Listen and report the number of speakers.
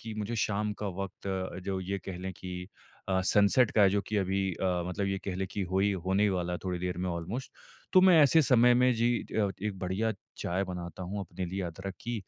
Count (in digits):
1